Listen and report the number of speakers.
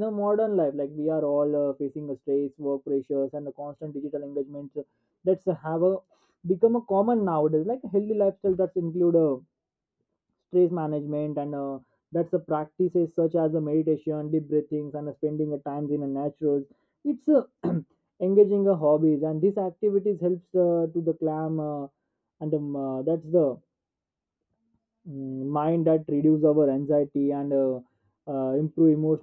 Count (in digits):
1